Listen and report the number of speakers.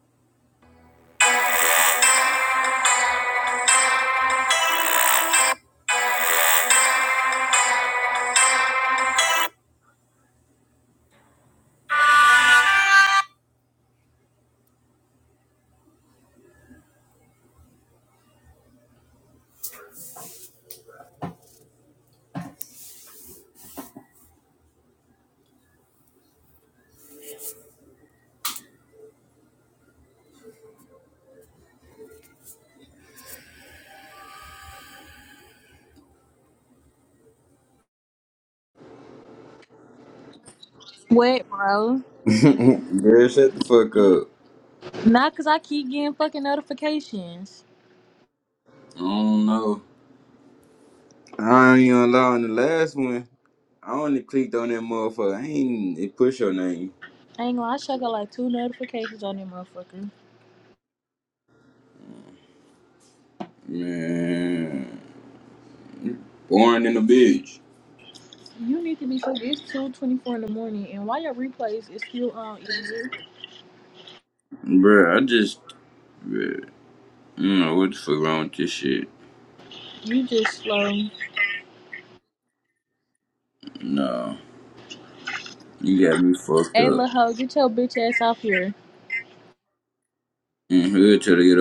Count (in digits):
2